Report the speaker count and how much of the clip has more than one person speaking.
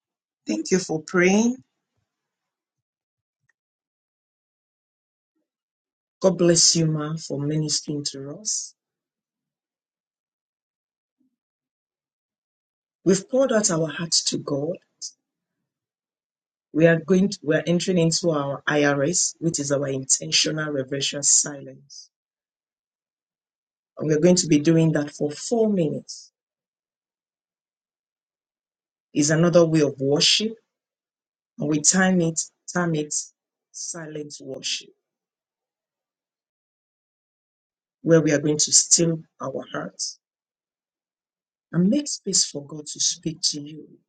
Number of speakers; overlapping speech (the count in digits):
1, no overlap